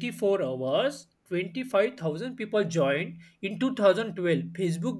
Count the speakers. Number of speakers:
1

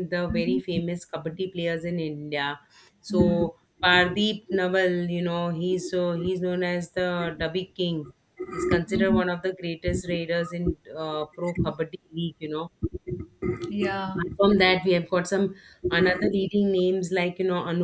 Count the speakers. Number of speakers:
2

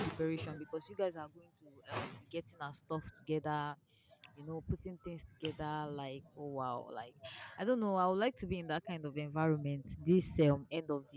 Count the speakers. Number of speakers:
1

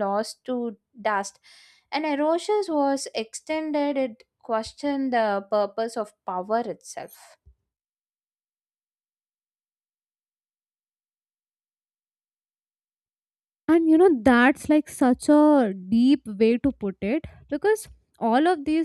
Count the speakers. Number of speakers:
2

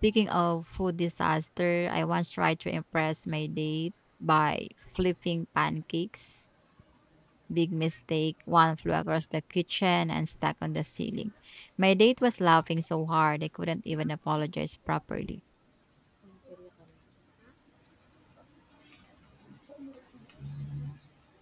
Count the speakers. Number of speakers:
1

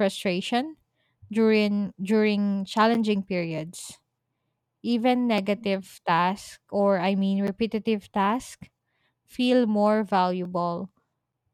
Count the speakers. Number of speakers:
1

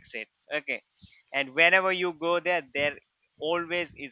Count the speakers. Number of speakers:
1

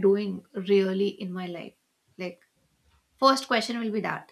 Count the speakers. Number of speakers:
1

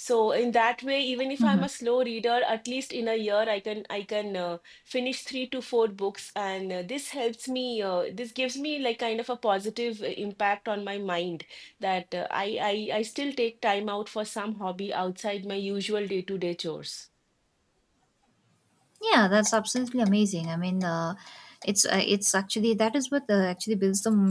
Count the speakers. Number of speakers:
2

